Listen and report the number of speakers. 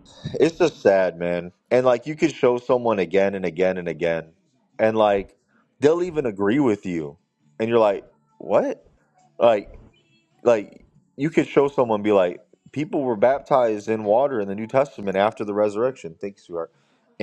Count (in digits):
1